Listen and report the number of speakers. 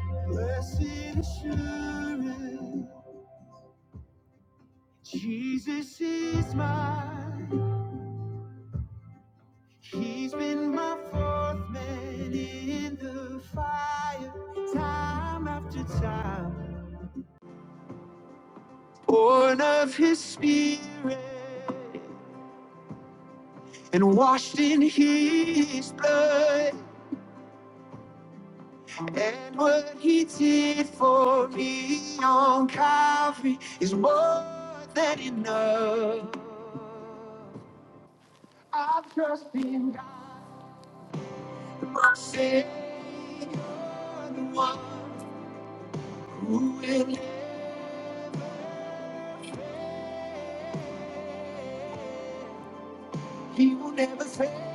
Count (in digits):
1